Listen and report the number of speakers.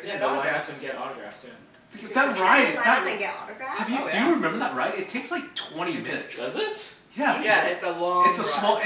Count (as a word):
four